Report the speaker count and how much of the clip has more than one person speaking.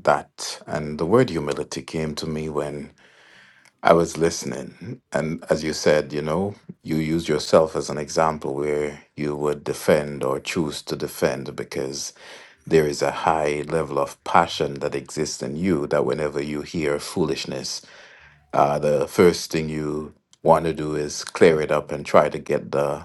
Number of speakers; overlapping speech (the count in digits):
1, no overlap